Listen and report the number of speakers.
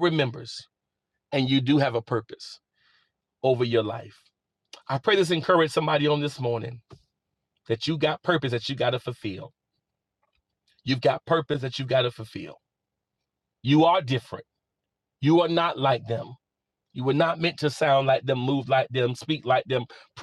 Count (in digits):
1